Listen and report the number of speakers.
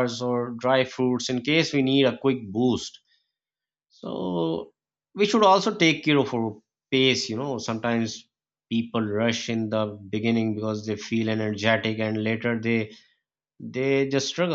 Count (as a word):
one